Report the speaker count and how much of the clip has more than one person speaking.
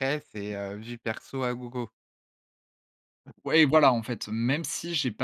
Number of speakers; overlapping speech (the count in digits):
2, no overlap